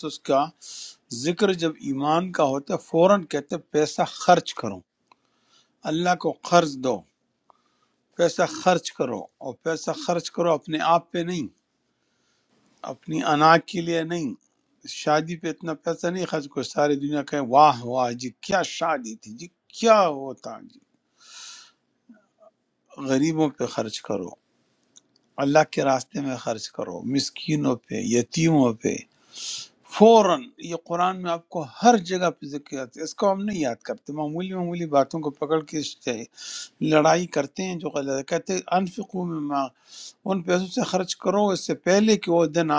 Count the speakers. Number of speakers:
1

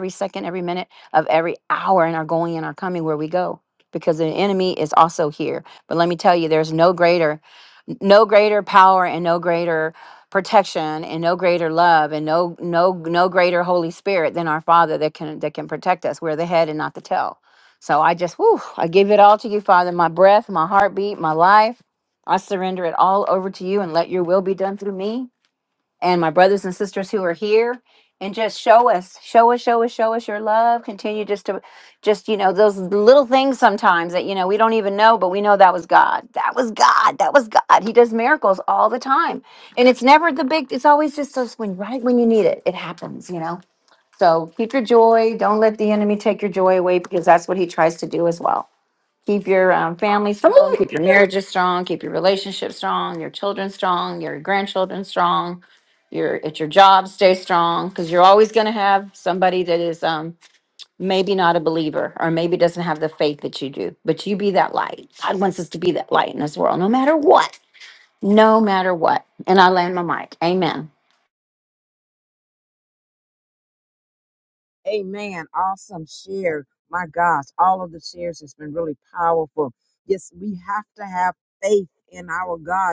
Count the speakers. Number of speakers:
2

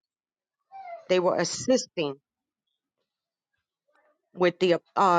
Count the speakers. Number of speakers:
1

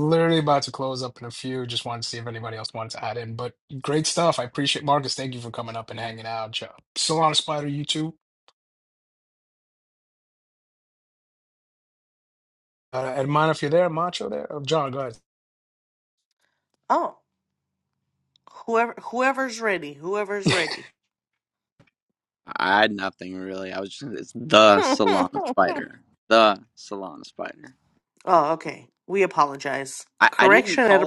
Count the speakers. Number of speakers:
3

